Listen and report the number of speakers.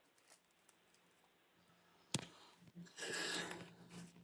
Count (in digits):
0